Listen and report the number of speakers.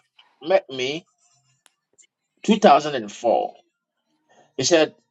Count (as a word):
one